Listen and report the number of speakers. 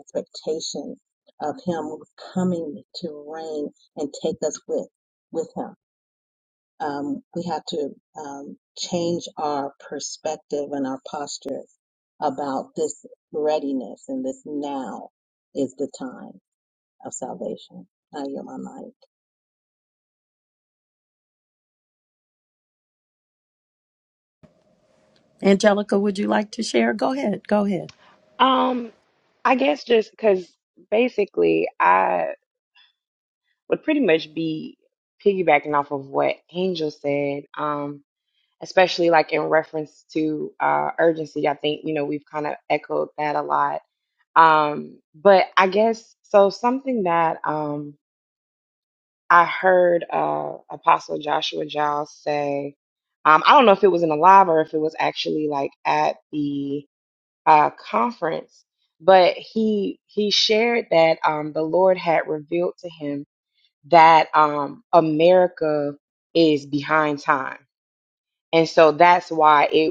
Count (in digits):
3